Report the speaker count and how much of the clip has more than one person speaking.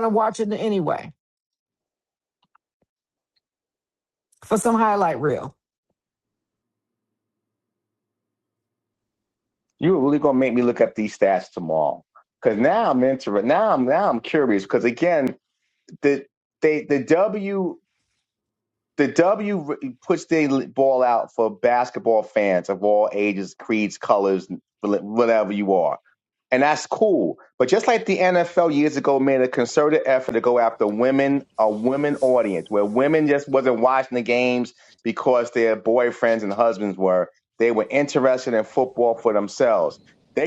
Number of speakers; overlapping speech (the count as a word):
two, no overlap